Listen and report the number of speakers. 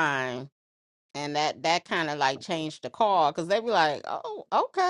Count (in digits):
1